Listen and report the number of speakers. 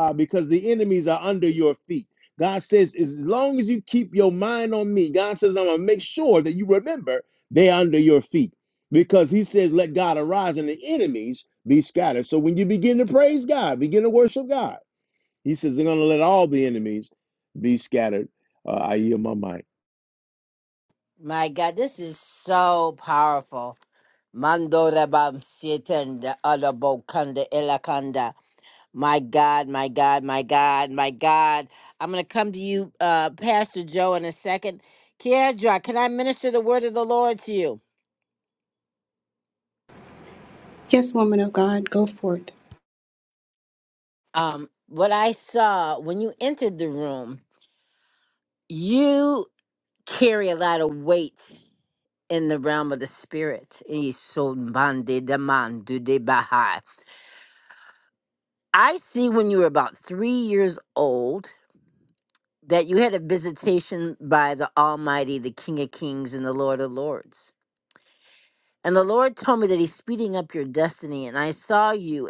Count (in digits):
3